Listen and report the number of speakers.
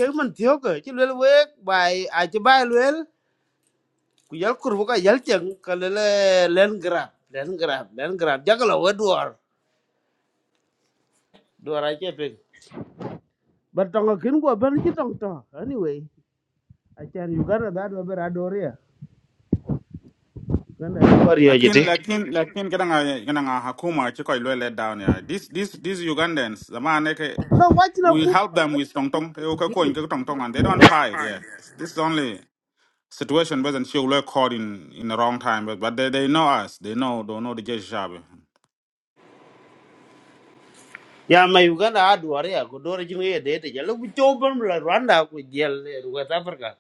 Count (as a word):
two